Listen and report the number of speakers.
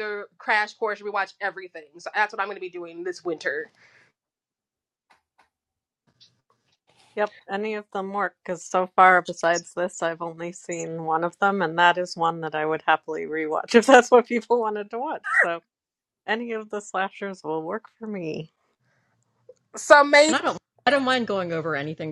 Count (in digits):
3